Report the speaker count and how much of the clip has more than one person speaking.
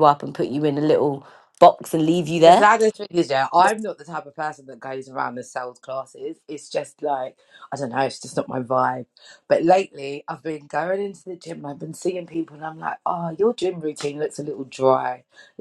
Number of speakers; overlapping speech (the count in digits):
2, about 2%